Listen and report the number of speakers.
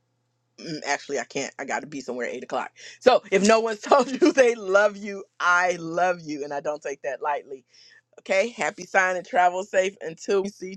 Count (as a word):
one